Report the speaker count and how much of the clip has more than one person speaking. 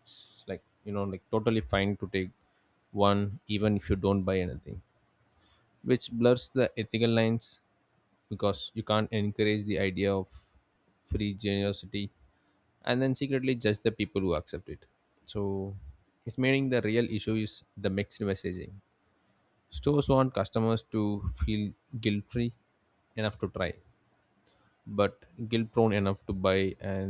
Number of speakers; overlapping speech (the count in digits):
1, no overlap